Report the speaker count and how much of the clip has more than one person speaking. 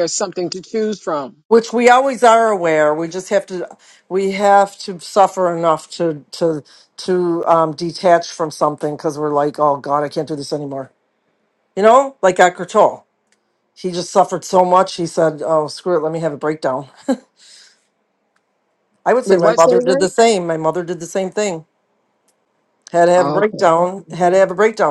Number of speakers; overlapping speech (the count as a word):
two, about 5%